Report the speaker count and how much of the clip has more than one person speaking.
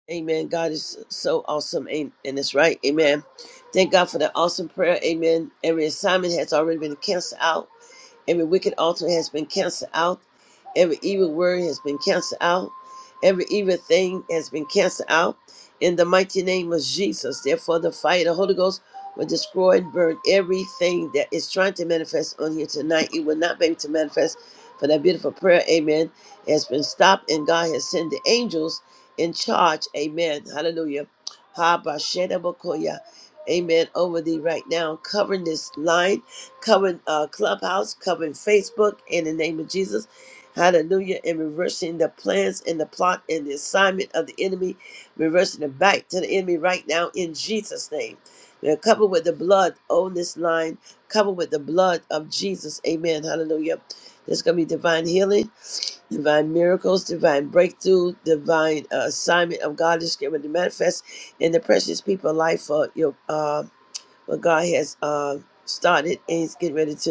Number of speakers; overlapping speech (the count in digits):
1, no overlap